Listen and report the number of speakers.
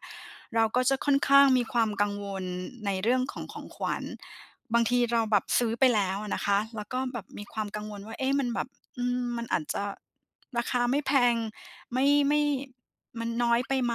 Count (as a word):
one